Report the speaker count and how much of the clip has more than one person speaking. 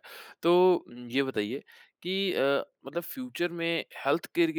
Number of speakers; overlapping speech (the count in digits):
1, no overlap